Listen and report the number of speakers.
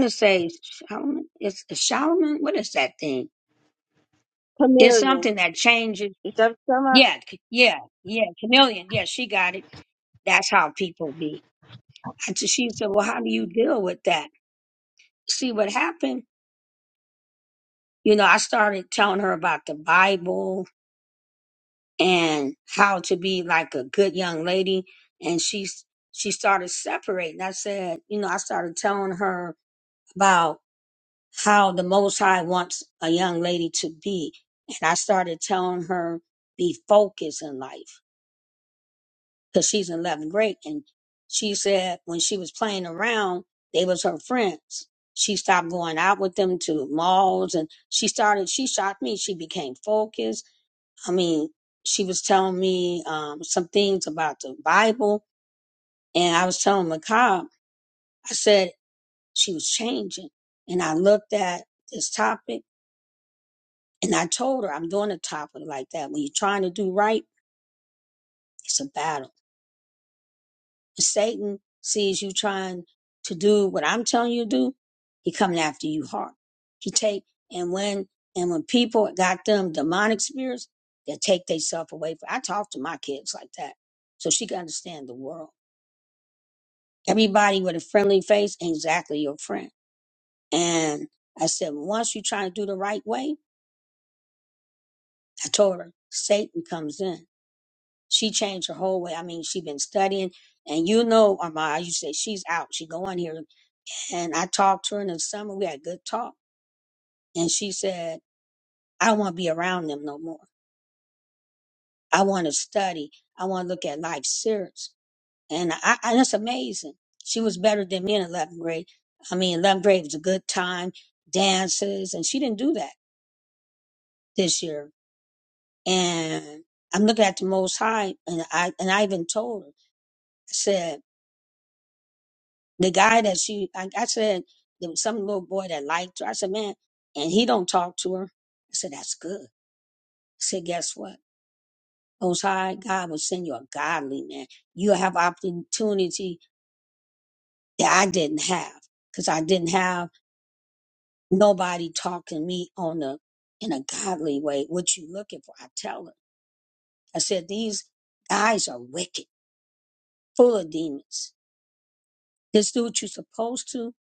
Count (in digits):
2